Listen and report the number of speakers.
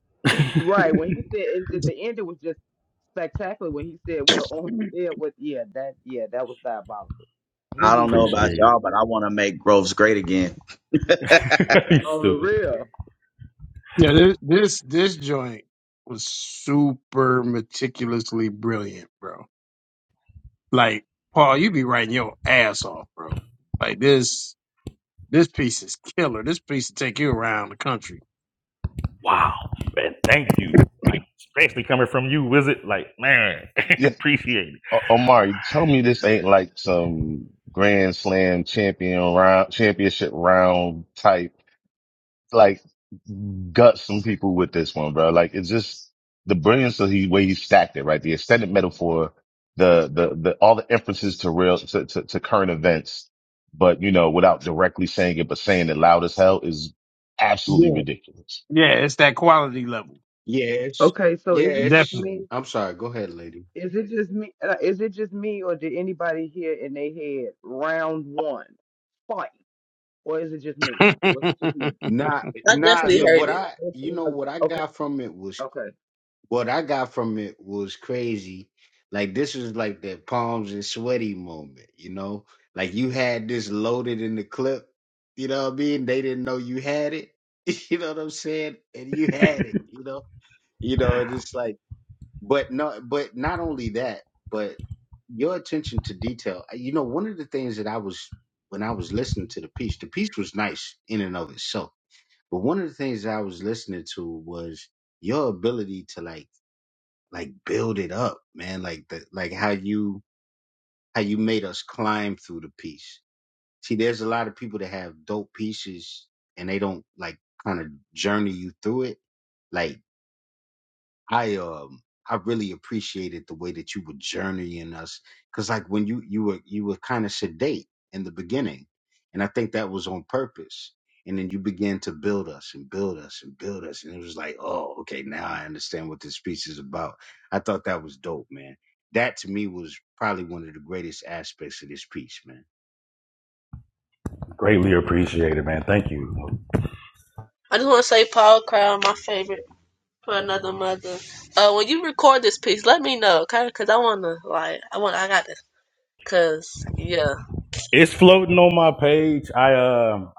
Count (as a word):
seven